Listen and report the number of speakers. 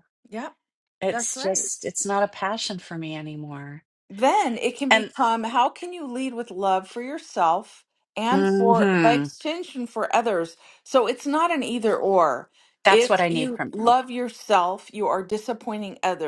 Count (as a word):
two